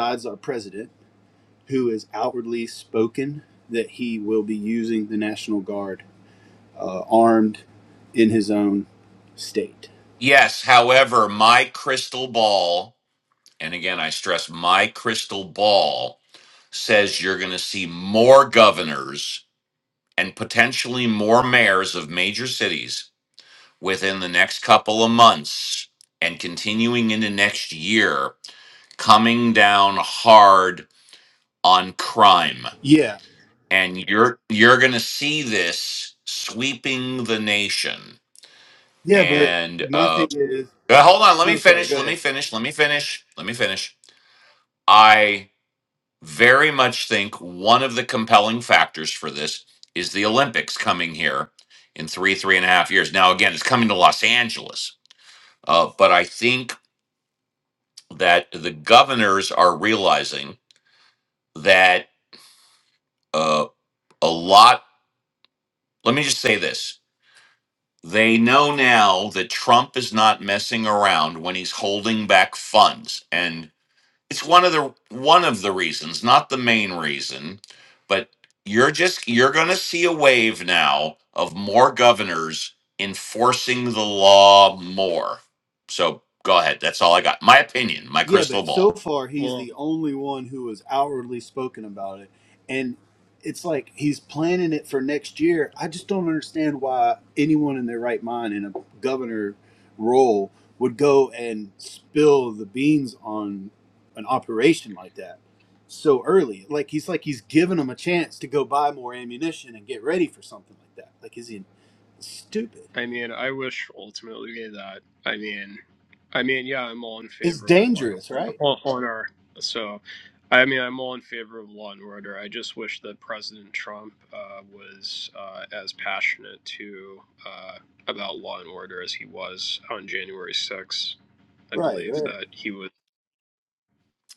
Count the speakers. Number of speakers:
three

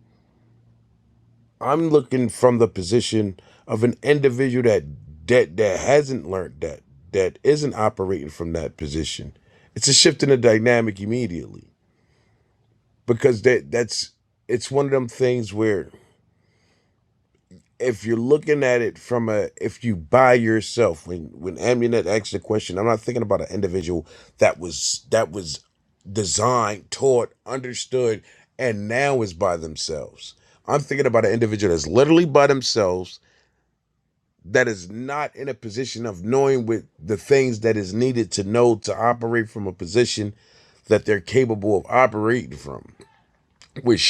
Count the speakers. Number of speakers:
one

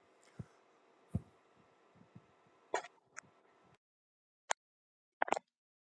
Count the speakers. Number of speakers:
zero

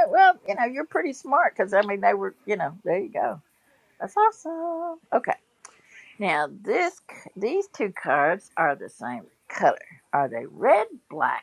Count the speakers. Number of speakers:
one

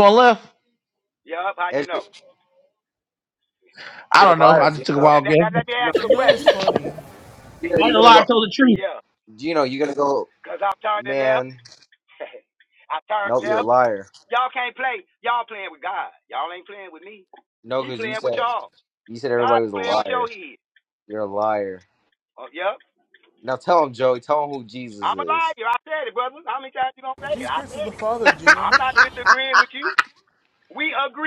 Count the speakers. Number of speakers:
four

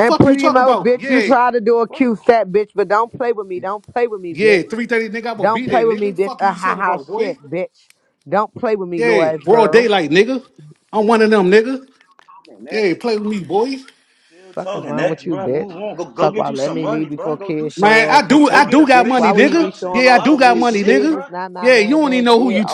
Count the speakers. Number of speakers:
three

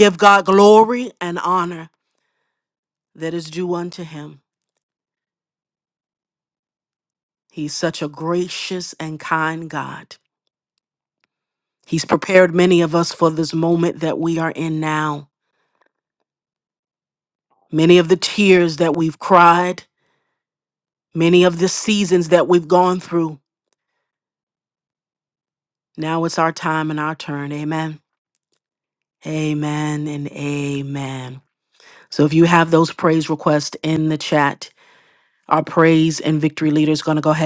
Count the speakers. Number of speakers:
one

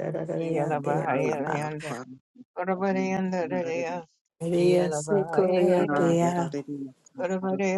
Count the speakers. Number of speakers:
three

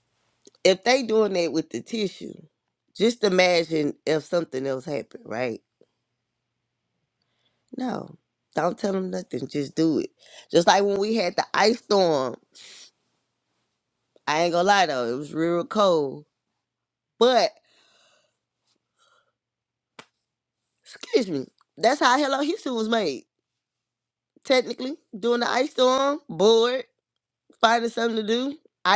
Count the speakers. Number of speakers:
one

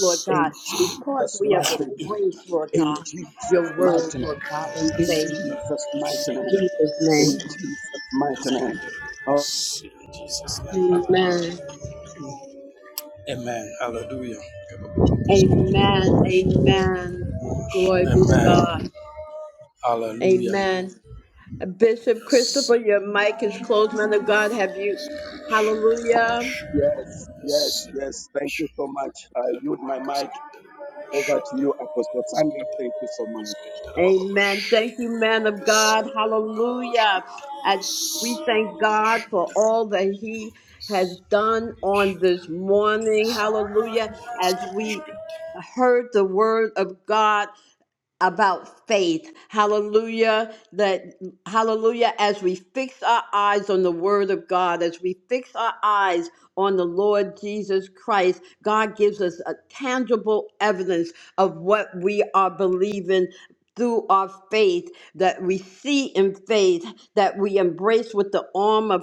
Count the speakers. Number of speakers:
three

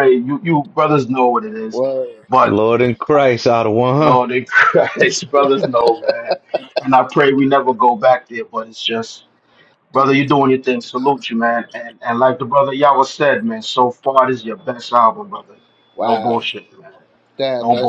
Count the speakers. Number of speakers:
three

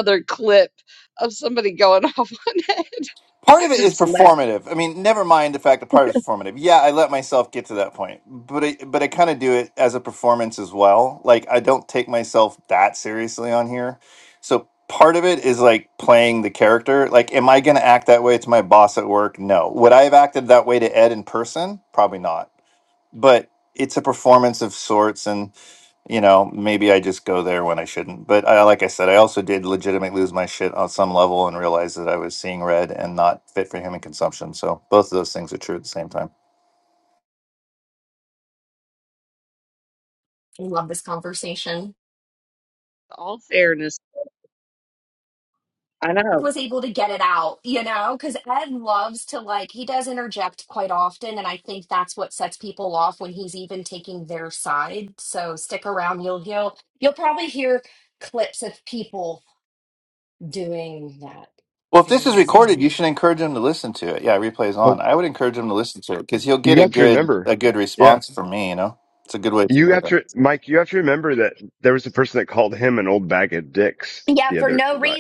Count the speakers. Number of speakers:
four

